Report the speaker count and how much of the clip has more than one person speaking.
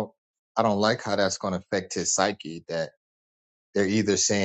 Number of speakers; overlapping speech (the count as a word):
one, no overlap